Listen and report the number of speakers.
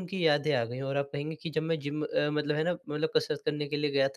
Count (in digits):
1